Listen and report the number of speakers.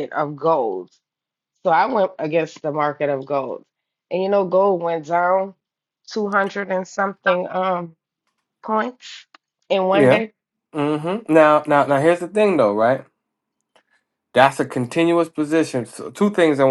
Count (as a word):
two